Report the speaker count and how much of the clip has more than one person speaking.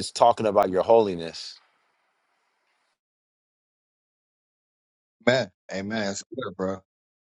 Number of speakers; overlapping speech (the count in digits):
2, no overlap